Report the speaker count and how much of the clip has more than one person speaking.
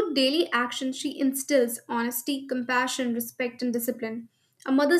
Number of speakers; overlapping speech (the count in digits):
1, no overlap